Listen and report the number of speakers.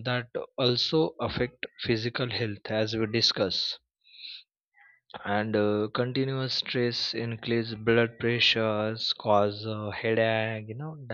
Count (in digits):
1